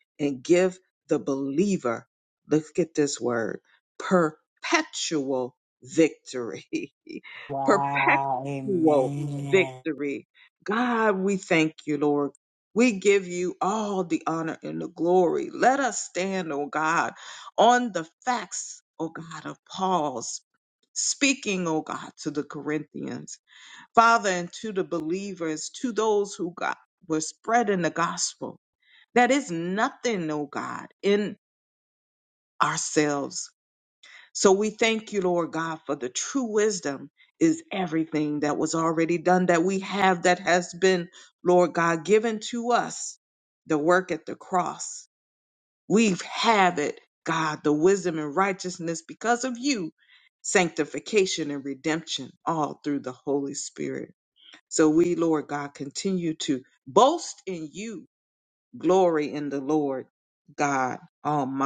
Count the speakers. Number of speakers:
2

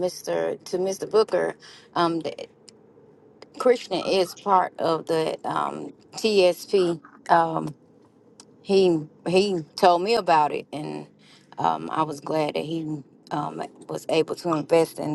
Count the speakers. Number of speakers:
1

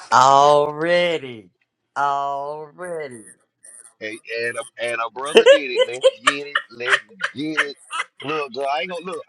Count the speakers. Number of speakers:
2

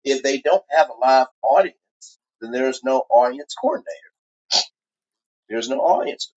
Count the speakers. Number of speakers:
1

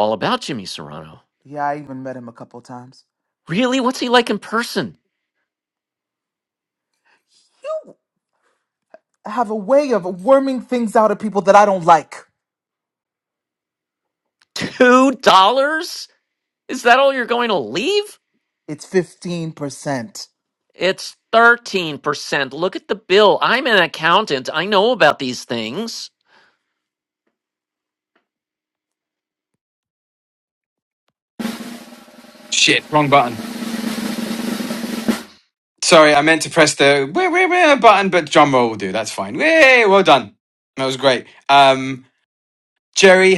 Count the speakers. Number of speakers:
3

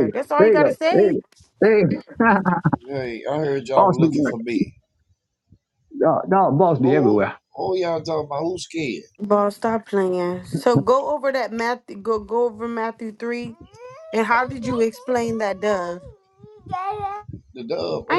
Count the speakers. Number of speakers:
3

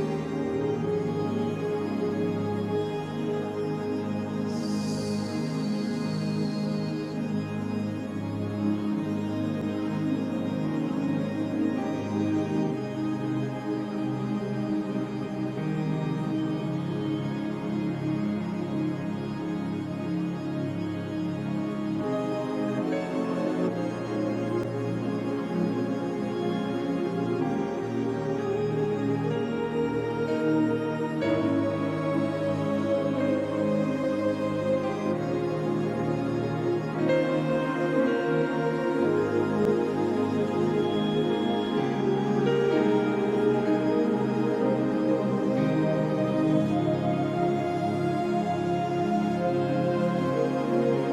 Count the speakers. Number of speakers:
0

